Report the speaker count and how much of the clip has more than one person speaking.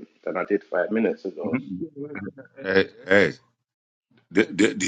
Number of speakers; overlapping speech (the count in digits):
2, no overlap